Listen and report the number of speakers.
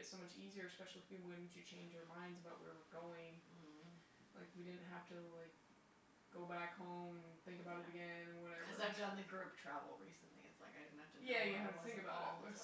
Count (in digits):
2